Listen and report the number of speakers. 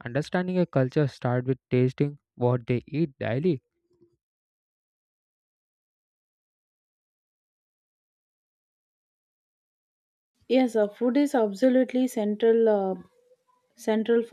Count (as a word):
two